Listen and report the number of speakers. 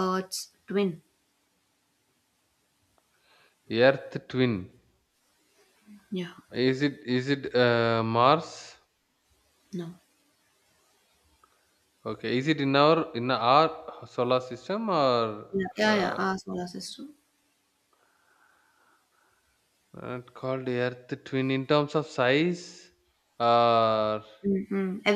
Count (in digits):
2